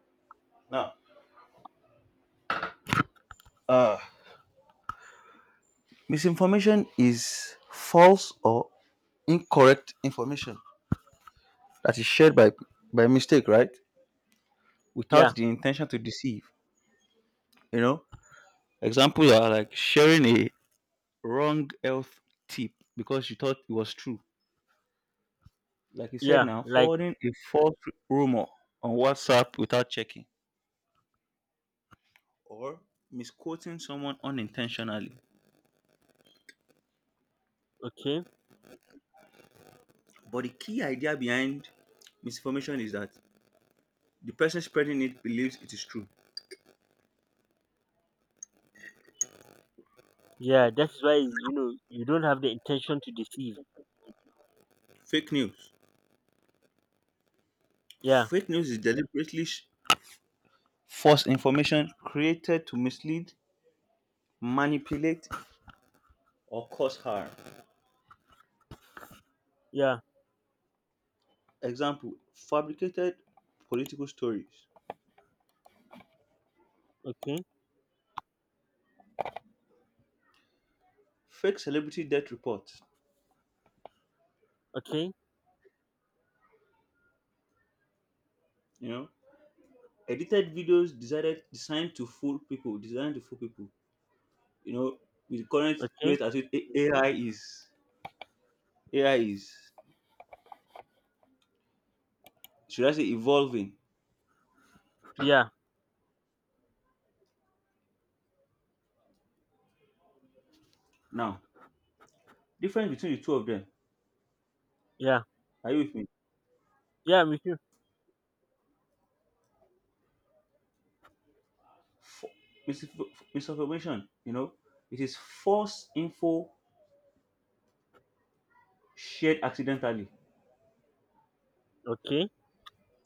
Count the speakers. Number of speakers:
2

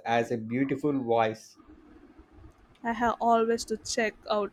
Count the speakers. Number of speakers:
2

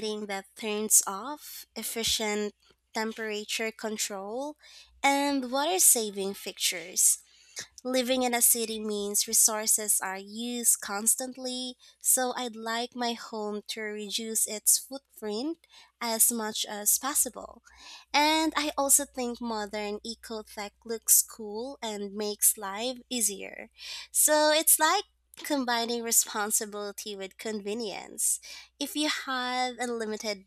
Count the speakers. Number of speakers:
1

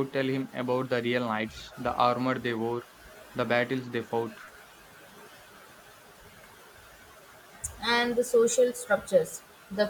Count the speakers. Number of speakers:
2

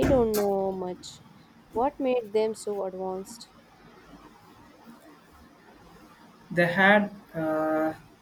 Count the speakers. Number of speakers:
2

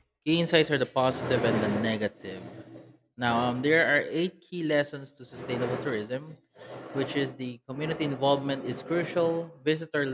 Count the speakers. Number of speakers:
1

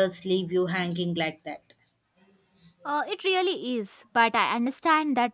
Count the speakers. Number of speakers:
2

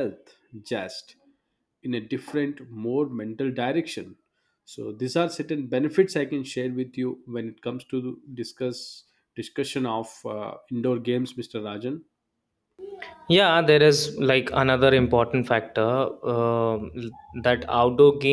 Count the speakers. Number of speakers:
2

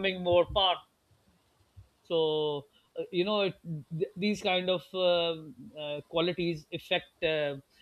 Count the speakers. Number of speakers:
1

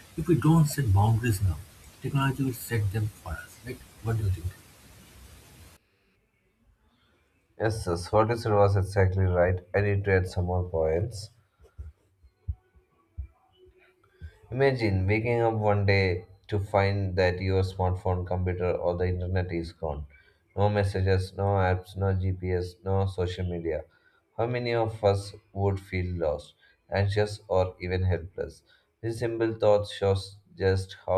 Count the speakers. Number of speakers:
2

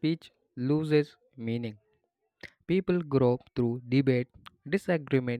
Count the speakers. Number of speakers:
1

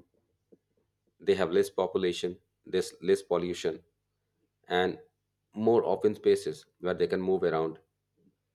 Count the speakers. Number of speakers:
1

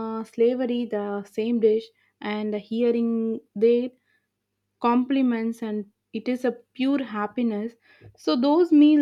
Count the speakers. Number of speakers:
1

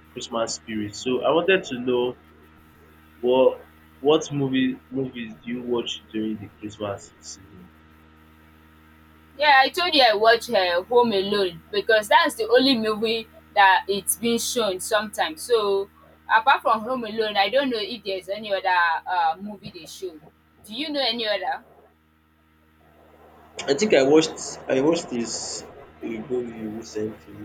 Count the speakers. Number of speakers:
2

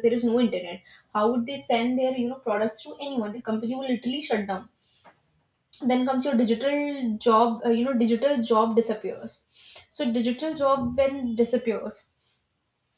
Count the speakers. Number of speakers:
1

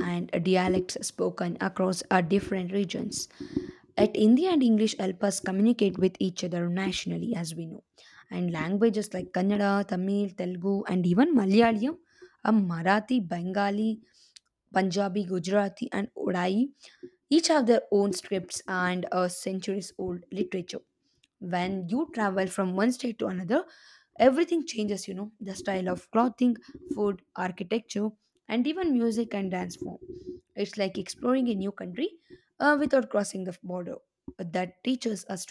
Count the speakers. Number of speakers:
1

